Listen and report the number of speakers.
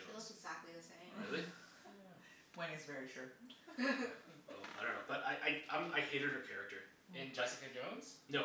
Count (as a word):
four